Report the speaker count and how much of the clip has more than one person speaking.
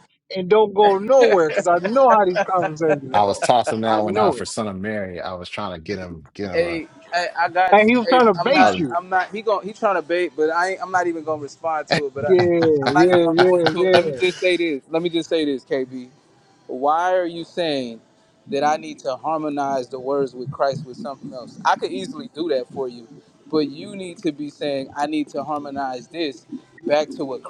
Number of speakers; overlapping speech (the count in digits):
3, about 14%